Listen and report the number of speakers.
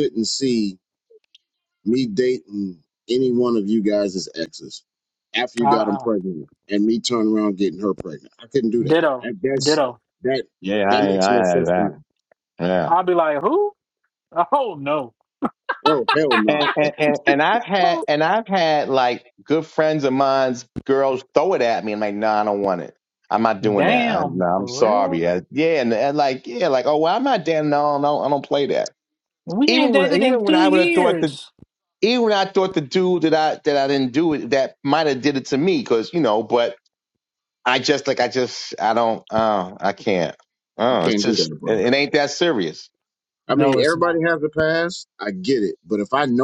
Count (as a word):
three